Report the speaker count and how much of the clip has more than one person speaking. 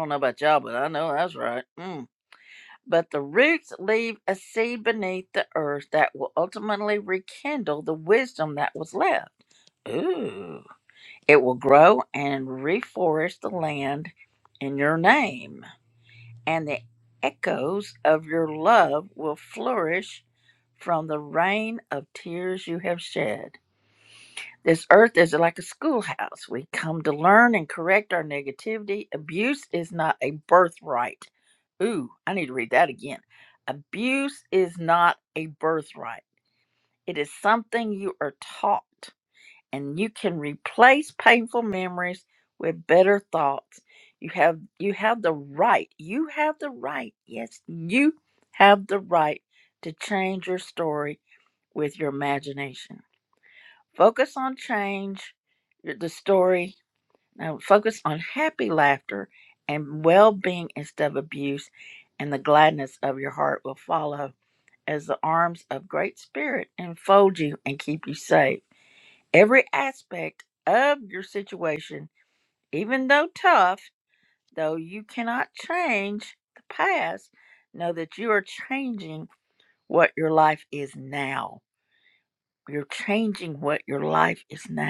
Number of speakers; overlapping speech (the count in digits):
1, no overlap